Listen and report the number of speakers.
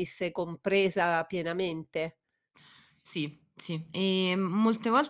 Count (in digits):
2